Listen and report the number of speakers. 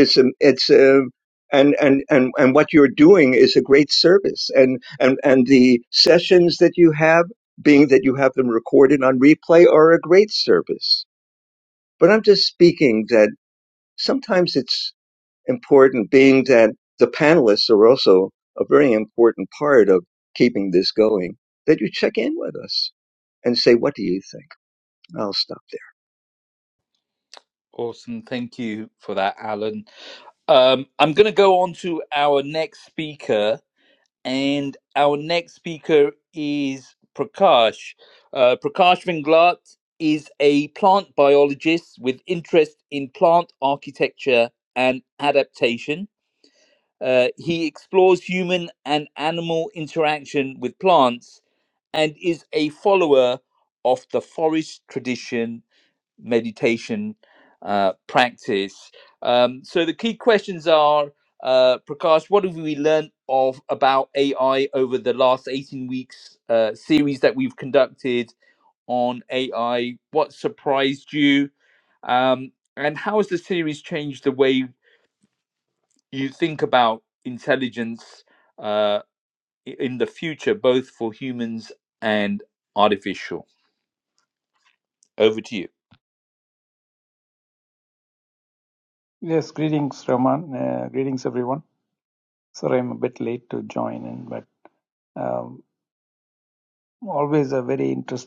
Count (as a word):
three